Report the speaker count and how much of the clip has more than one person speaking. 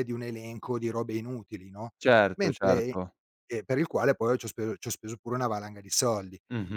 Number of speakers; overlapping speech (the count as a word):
two, about 9%